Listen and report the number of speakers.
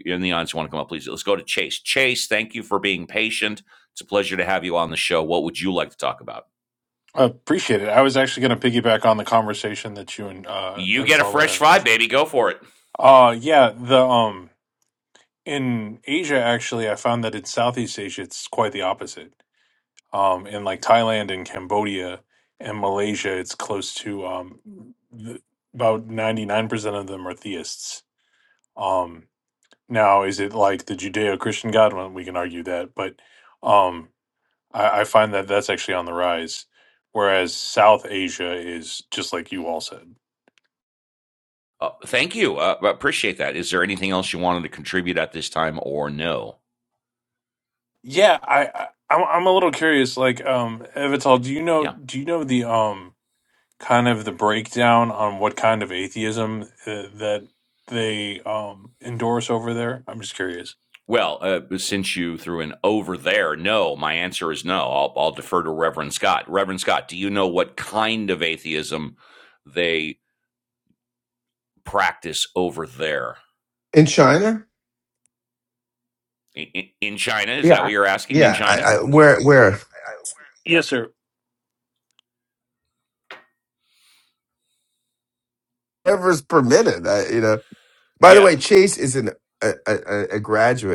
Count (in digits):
3